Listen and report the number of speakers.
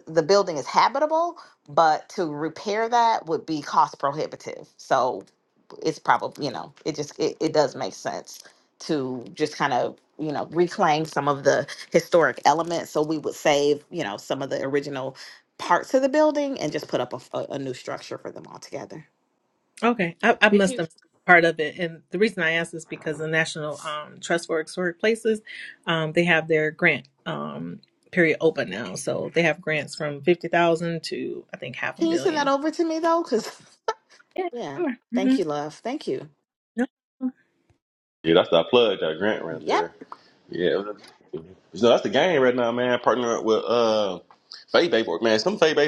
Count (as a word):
three